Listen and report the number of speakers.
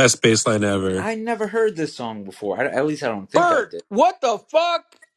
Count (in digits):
3